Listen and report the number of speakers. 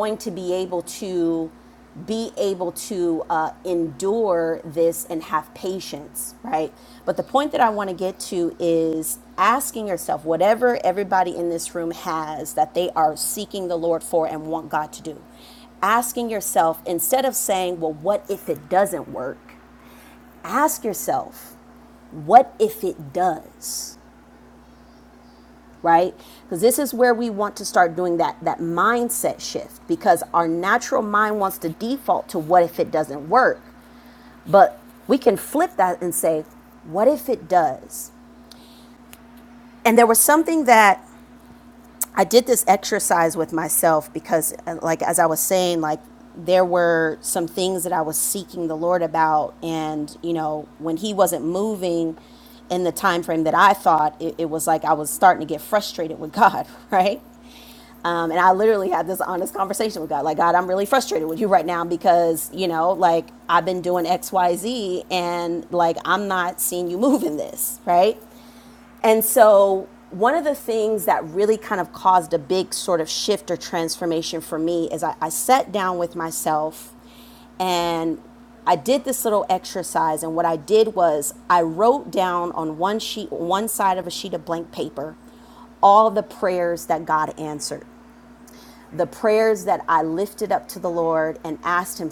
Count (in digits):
1